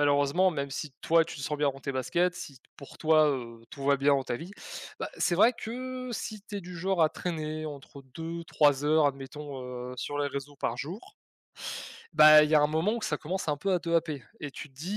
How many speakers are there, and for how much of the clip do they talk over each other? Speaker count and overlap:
1, no overlap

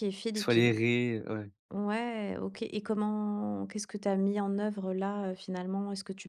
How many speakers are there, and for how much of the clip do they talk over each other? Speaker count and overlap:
2, about 6%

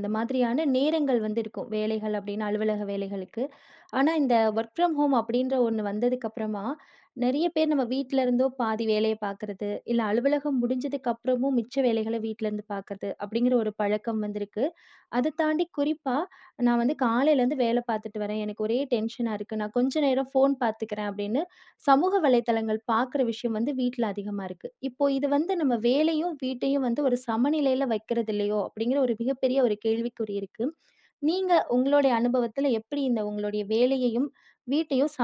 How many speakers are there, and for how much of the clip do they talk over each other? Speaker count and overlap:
1, no overlap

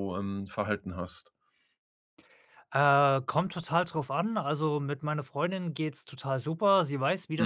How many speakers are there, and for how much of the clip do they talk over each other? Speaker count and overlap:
2, about 1%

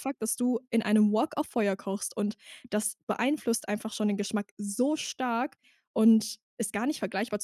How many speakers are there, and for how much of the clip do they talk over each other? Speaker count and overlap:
1, no overlap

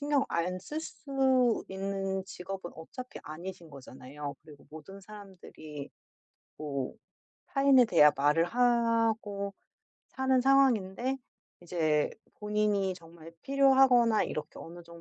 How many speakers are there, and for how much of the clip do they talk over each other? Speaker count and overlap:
1, no overlap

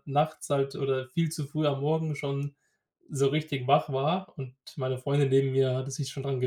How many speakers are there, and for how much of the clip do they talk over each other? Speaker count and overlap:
1, no overlap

